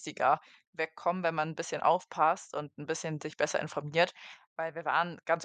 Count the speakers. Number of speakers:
one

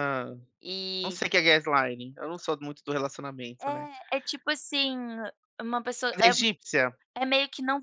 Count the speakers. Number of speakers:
two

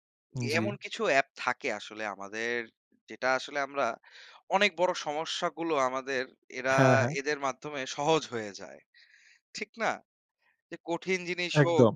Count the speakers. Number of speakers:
two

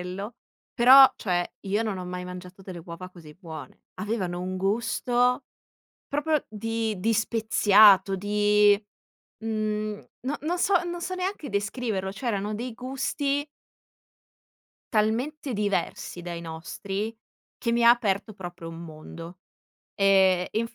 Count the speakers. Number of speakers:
one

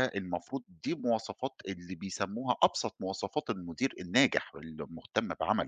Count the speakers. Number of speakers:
one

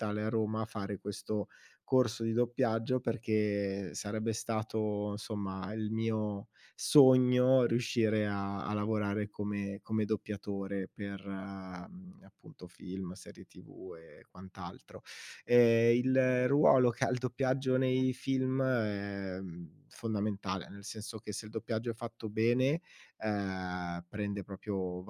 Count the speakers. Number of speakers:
one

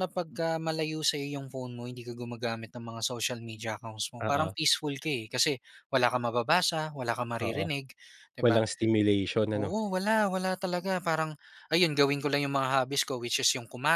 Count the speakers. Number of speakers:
two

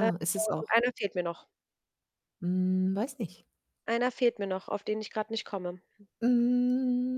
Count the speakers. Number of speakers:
two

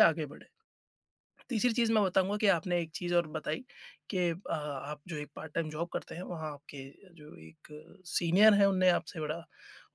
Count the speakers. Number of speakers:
one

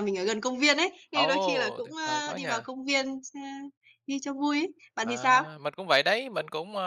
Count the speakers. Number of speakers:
two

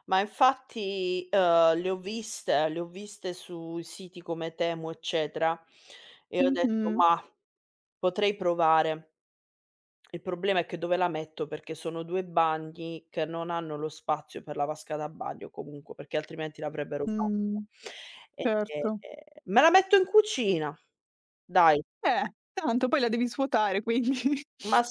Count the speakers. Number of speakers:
two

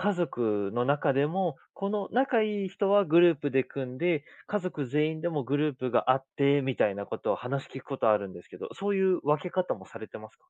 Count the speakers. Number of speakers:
one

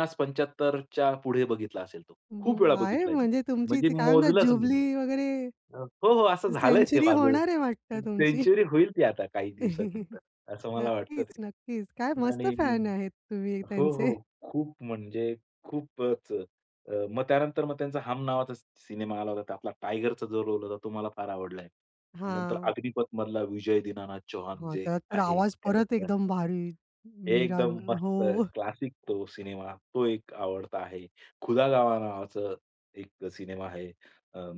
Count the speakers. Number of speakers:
two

